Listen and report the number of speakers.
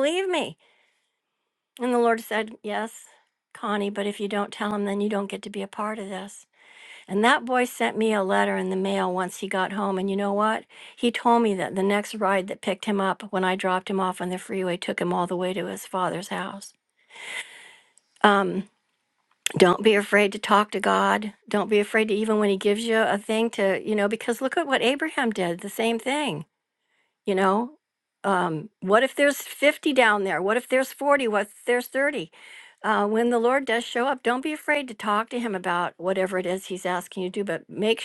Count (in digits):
1